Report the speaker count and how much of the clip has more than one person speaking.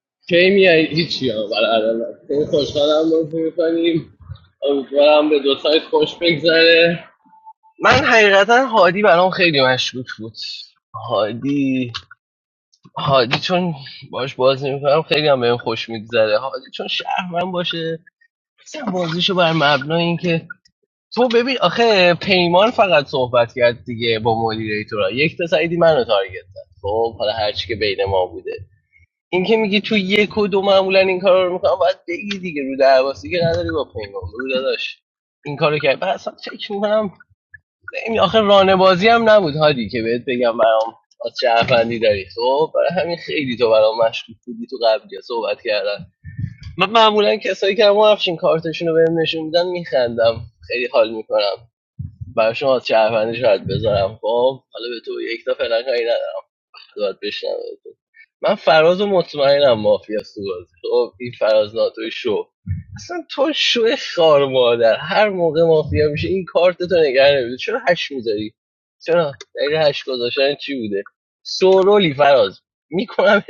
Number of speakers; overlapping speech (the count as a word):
one, no overlap